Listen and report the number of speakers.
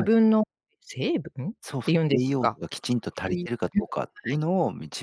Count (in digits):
2